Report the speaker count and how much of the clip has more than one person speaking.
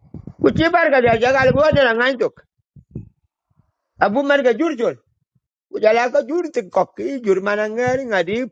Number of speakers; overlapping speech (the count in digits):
1, no overlap